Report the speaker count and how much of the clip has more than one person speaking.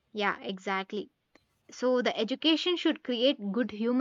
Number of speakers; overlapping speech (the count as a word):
one, no overlap